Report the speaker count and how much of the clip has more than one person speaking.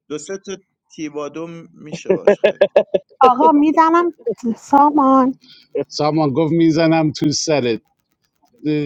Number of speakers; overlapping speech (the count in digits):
3, no overlap